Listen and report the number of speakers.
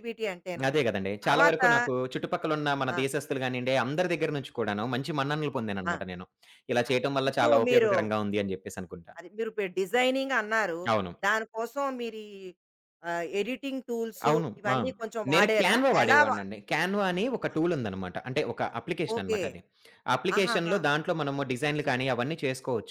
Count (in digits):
2